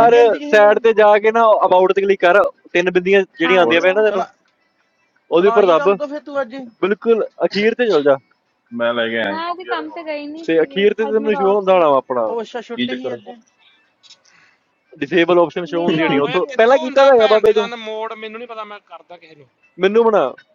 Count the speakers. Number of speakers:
5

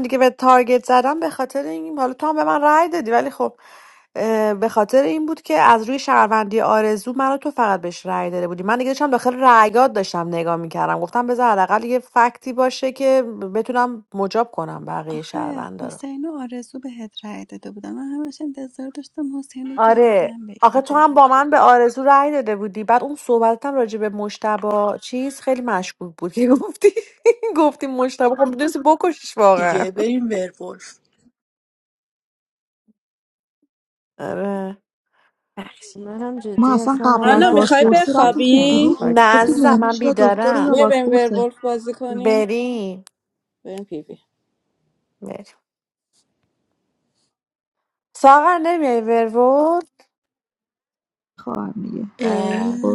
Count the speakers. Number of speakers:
6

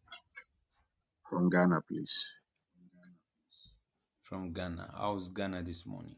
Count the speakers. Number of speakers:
2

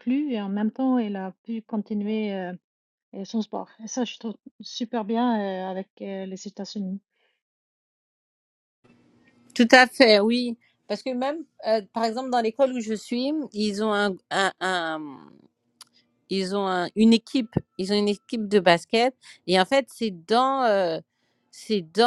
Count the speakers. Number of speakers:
2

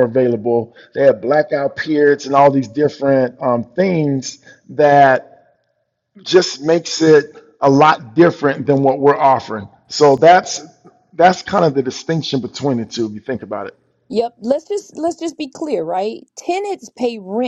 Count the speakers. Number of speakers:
2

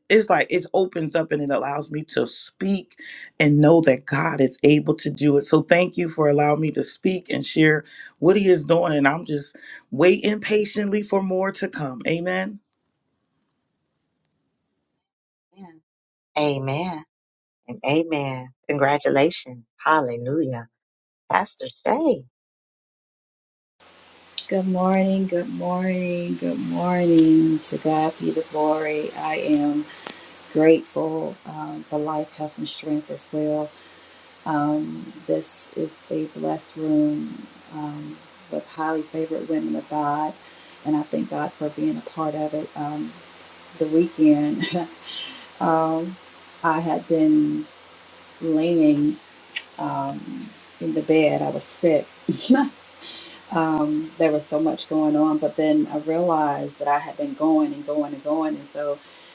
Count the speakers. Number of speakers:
3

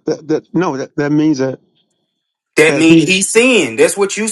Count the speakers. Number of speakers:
2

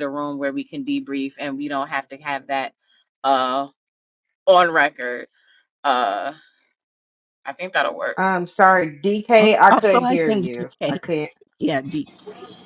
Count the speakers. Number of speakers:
3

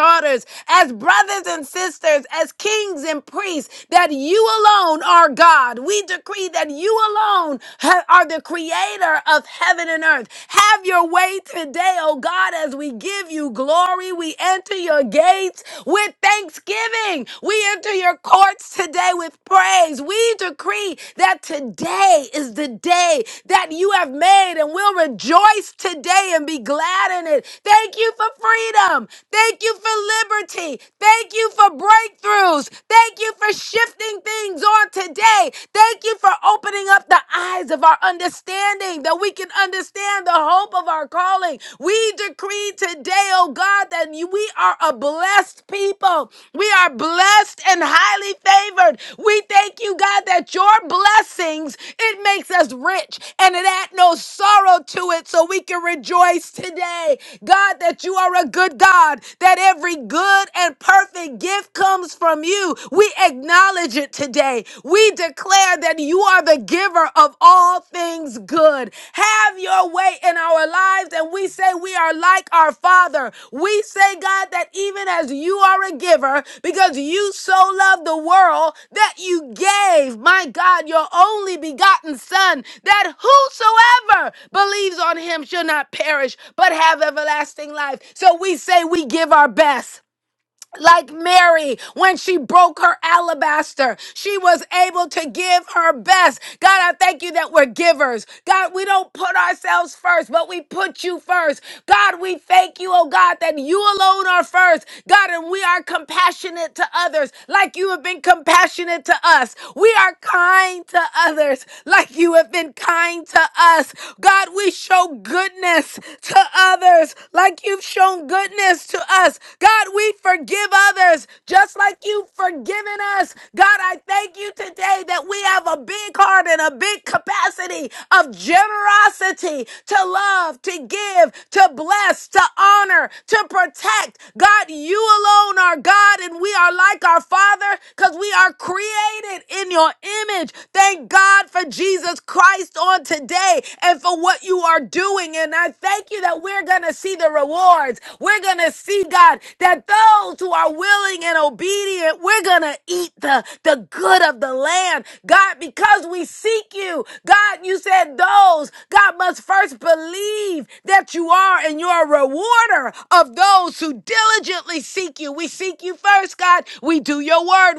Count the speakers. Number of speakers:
1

